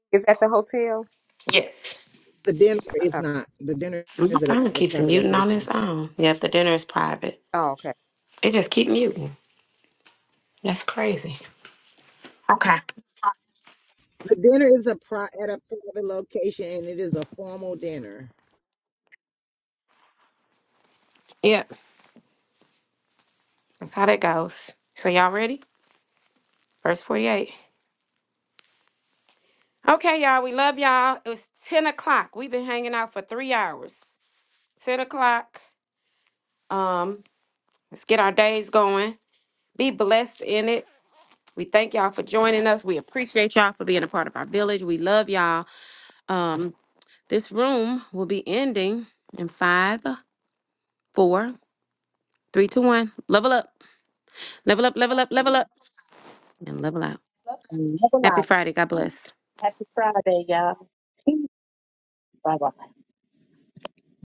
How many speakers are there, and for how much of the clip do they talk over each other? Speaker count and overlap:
four, about 3%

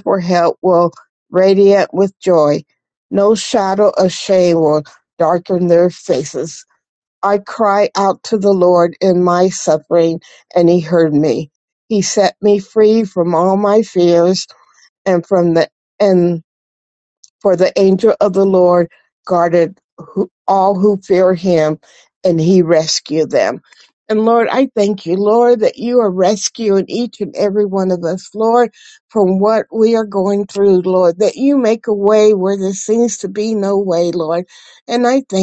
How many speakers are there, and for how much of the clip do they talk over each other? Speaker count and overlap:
one, no overlap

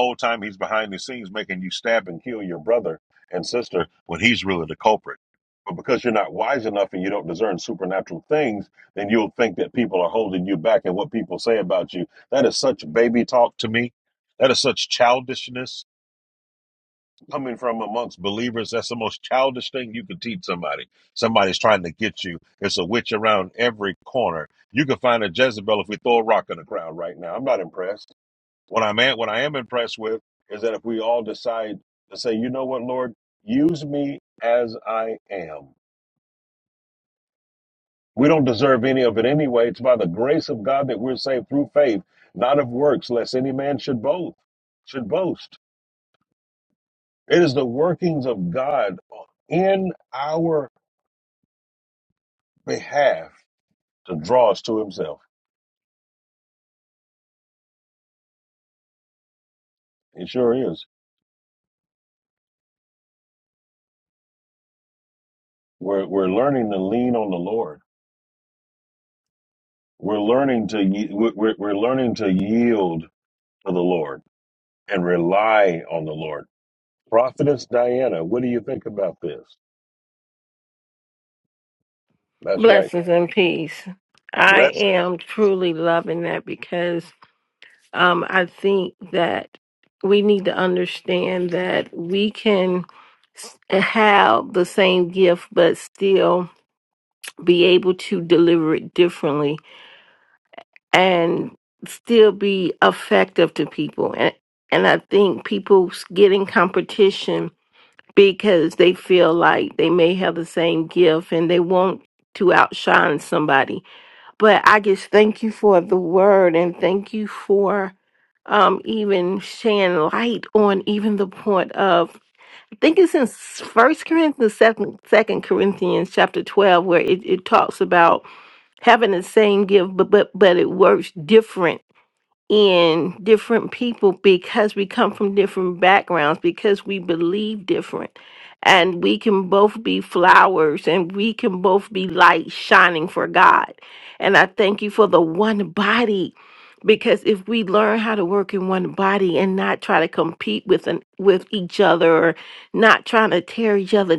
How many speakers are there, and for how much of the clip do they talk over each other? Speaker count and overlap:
two, under 1%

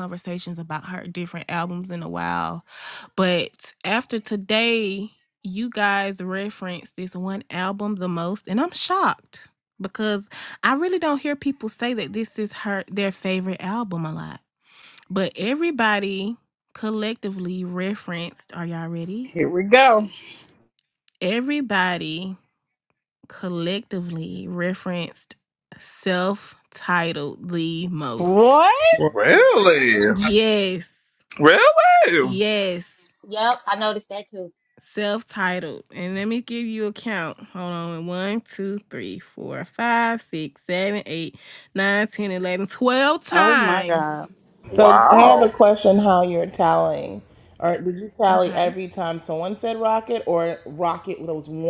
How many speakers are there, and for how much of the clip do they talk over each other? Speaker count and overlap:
five, about 5%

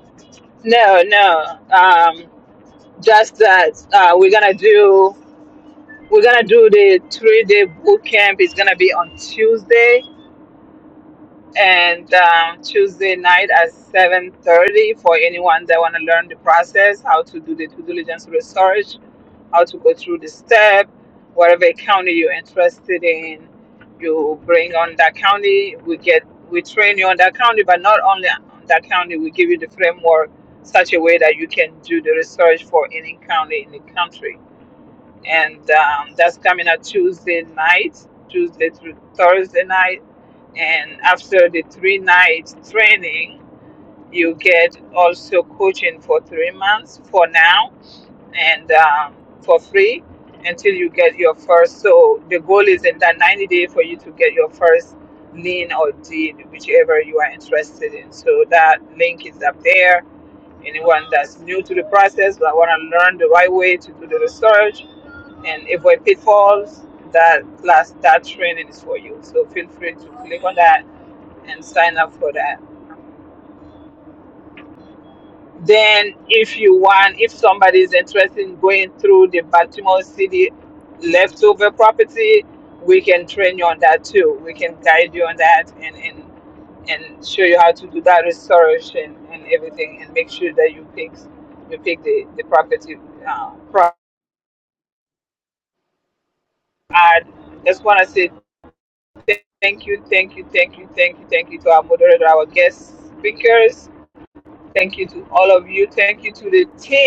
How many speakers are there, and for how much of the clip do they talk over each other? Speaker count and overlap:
one, no overlap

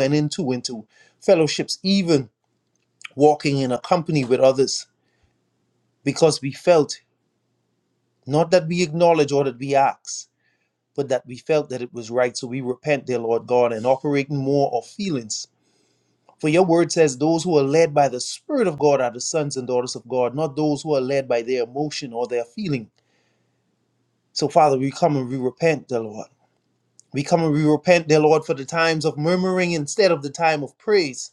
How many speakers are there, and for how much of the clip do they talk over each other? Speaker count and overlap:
one, no overlap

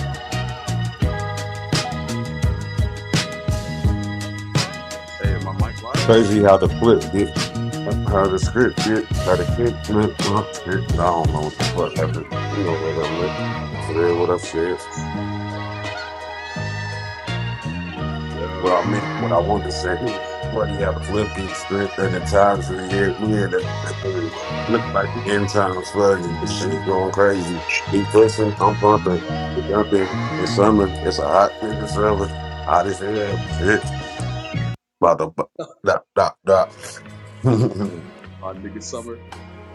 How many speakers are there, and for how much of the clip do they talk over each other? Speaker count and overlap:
two, about 1%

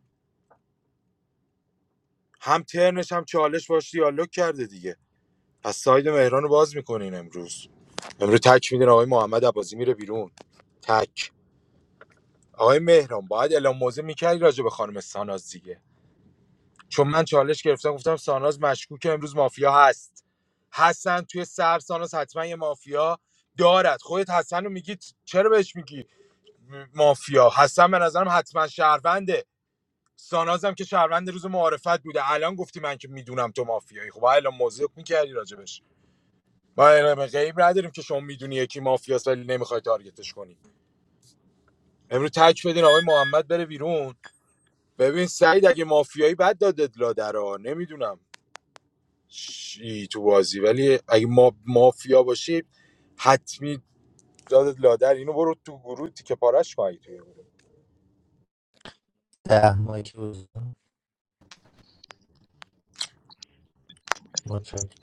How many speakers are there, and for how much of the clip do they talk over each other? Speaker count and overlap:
two, no overlap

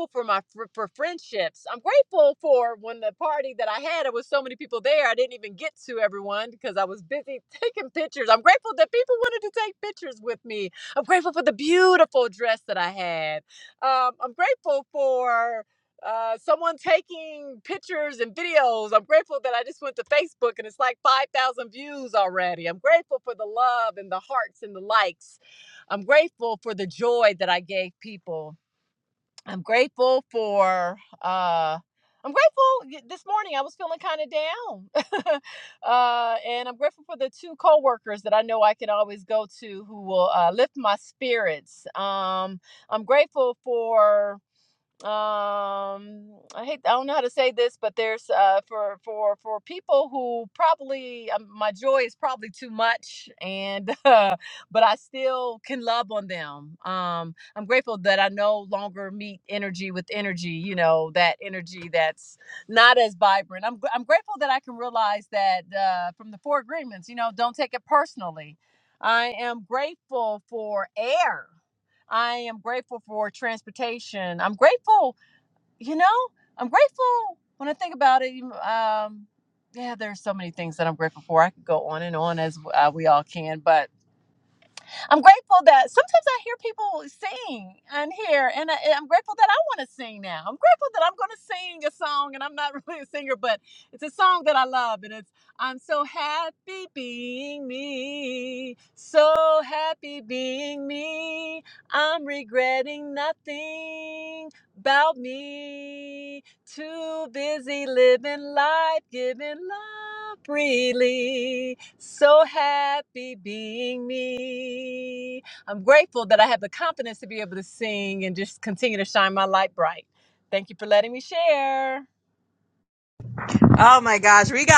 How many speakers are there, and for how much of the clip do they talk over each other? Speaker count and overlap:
two, no overlap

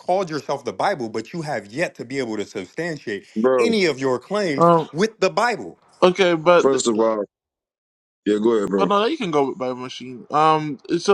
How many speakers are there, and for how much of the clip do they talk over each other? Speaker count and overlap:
three, about 7%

